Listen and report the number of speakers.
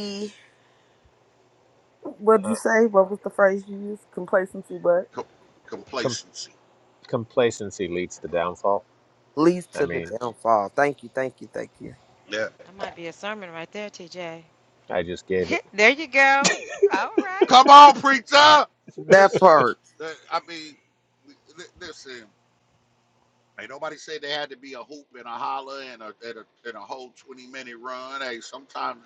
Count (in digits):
4